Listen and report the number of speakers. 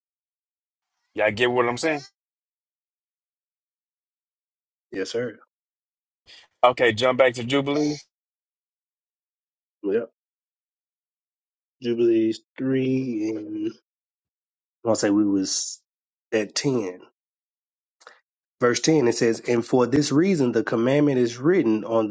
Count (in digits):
2